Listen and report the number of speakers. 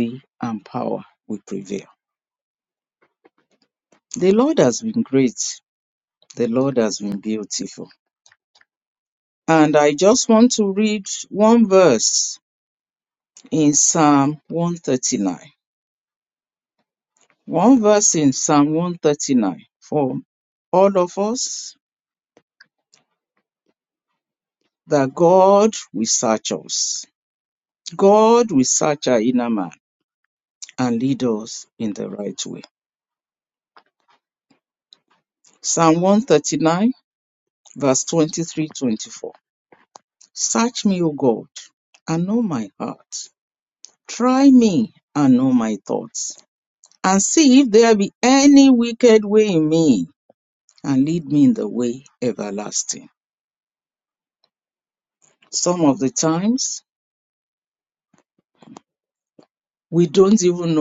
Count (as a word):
one